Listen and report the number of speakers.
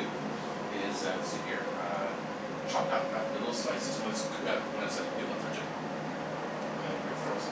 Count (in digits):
1